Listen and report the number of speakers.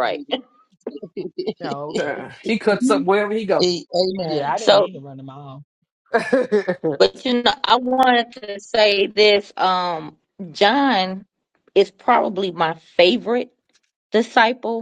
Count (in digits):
4